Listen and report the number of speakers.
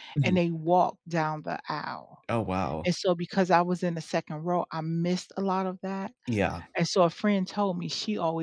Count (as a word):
two